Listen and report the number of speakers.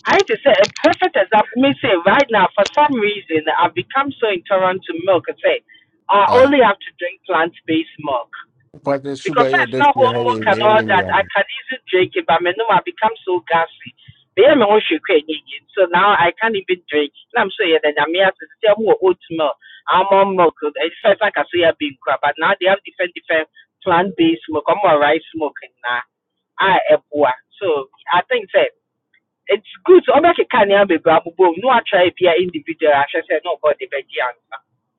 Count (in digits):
2